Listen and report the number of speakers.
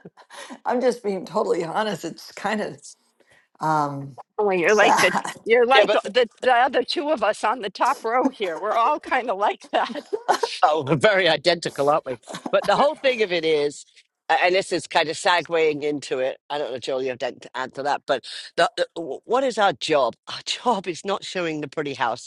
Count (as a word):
three